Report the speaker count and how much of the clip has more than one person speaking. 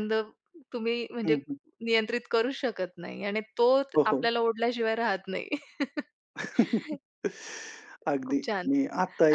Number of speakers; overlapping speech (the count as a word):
two, about 10%